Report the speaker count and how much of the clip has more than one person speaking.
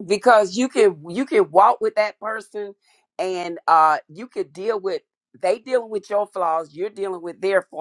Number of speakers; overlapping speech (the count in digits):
1, no overlap